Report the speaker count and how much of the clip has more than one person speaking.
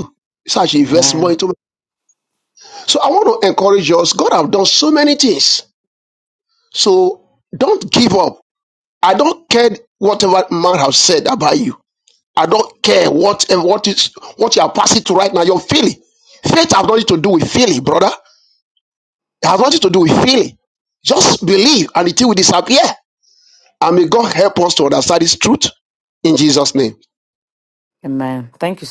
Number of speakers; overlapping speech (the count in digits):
2, about 2%